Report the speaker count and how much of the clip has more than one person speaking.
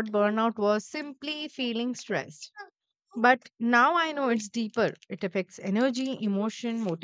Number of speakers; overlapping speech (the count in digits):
1, no overlap